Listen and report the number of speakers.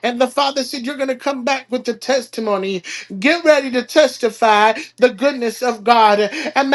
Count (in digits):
1